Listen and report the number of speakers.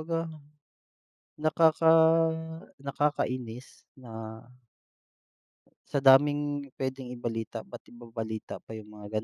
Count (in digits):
1